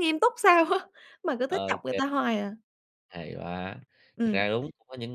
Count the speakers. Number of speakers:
two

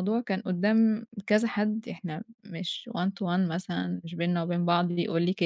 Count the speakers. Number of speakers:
one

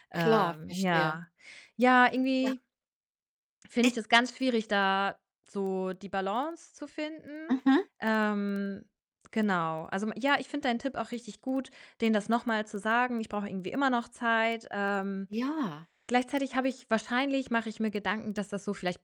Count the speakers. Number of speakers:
two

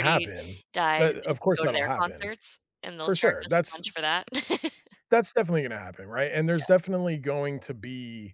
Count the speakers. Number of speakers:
two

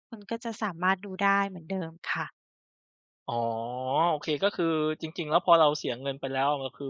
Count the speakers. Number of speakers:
two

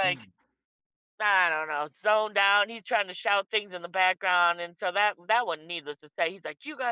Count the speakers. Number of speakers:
one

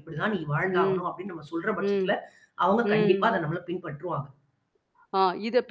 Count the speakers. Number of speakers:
two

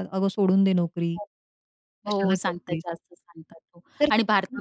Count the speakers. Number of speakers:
two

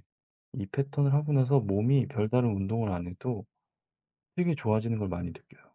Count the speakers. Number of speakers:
one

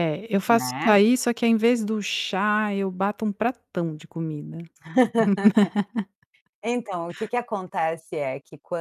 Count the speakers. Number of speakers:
two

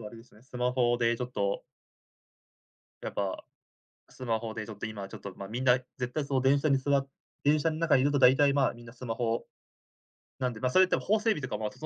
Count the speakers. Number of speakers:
one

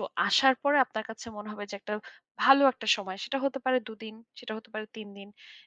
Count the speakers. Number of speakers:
one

